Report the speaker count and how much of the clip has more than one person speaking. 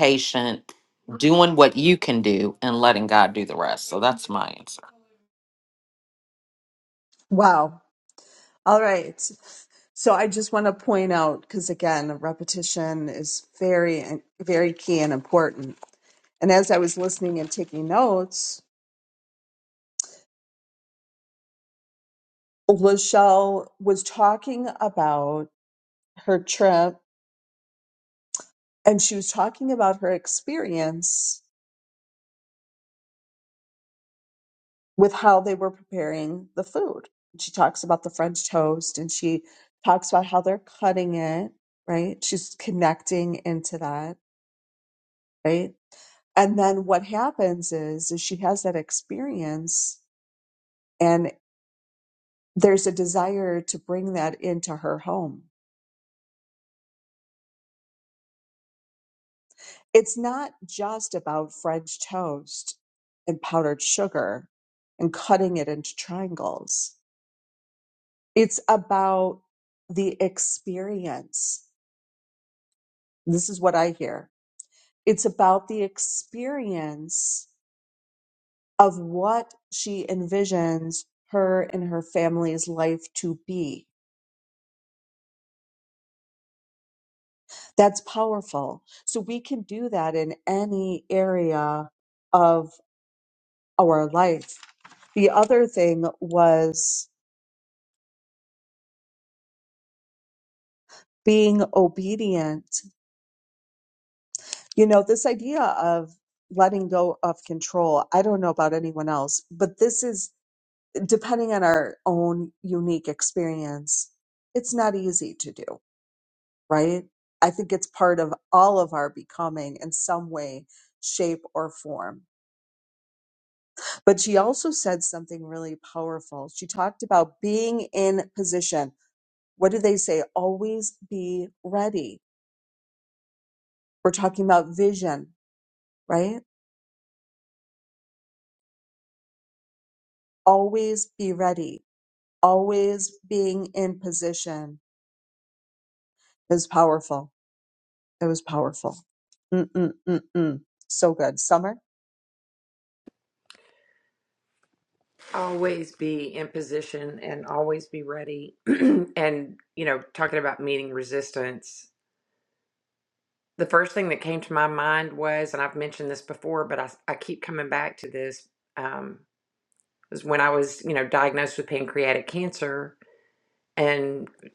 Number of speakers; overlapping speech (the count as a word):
three, no overlap